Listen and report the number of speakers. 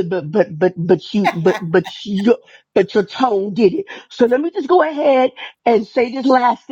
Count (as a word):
one